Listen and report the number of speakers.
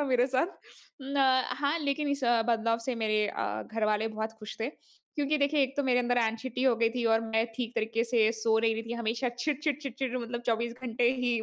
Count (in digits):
1